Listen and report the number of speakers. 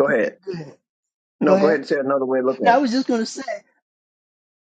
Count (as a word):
two